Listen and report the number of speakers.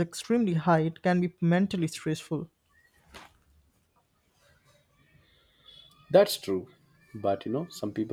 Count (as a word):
two